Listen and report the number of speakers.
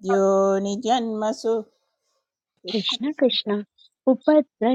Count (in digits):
2